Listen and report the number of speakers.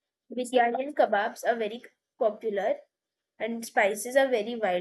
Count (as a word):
one